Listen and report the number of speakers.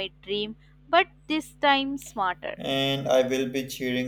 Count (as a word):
two